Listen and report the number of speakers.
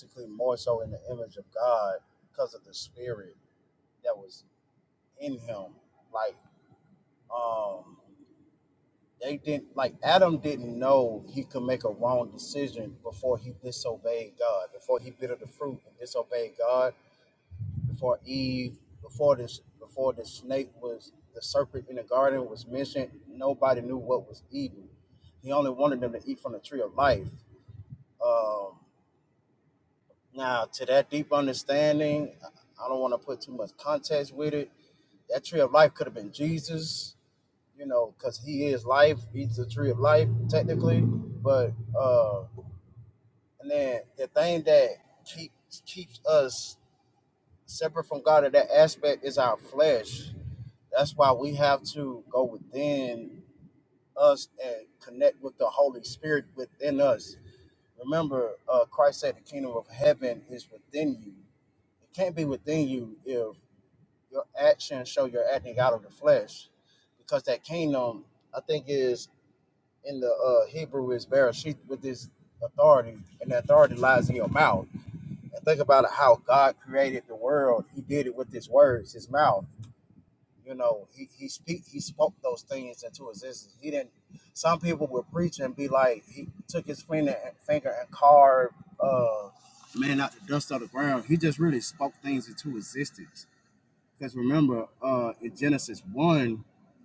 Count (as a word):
one